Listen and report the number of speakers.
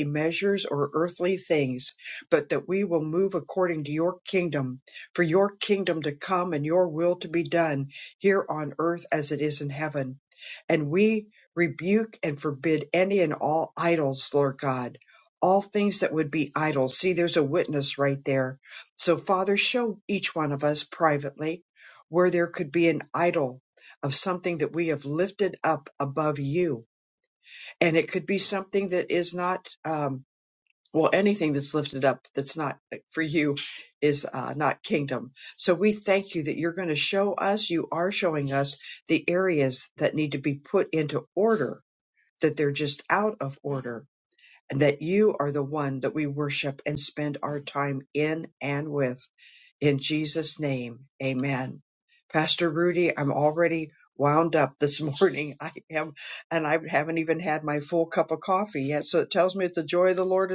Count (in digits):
1